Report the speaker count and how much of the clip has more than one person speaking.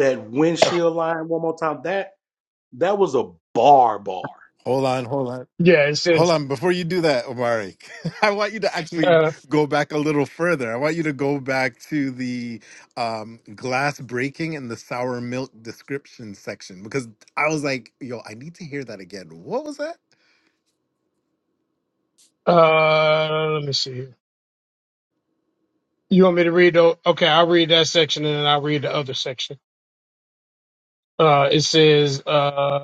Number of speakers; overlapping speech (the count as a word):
three, about 1%